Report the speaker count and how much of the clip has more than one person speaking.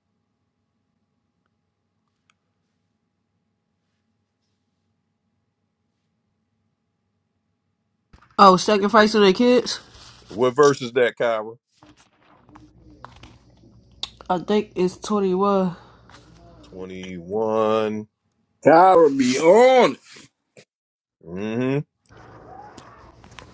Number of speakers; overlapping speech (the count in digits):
3, no overlap